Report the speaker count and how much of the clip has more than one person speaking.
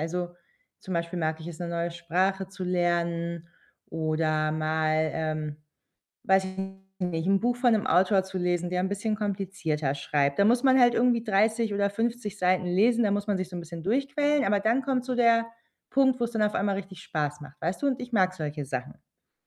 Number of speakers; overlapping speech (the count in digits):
1, no overlap